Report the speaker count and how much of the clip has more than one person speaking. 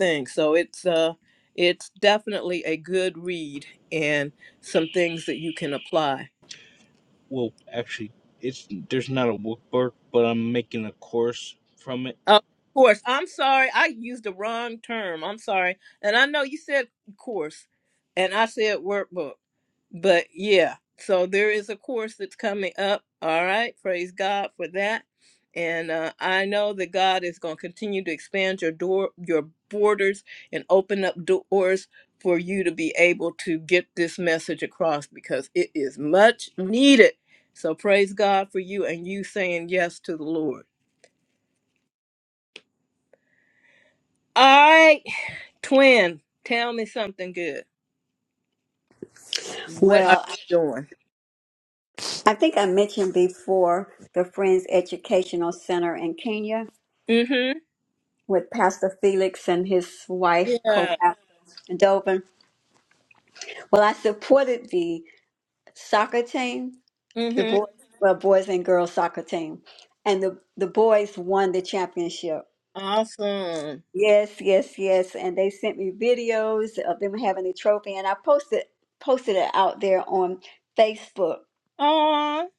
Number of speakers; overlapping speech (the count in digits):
3, about 1%